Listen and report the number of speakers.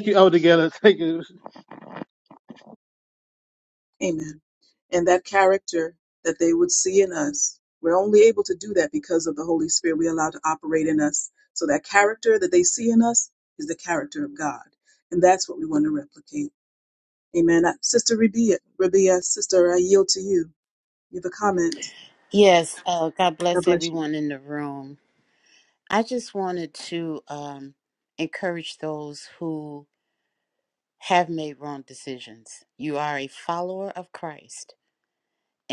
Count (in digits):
3